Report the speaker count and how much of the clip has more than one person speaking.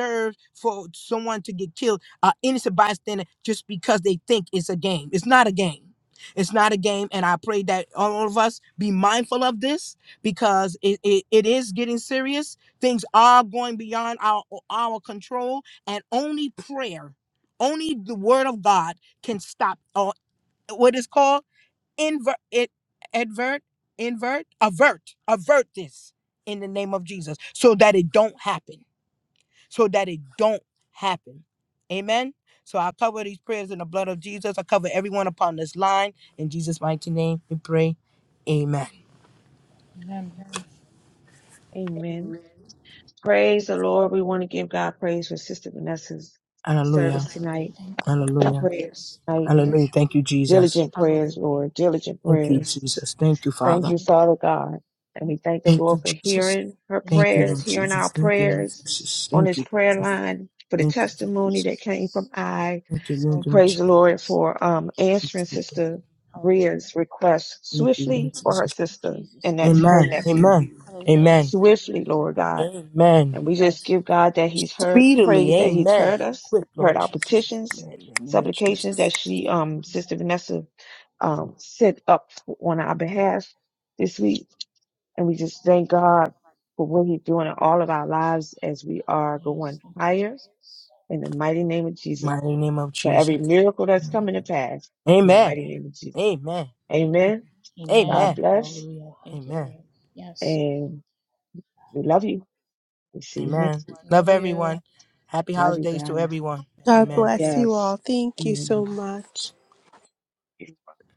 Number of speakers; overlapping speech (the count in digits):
4, about 26%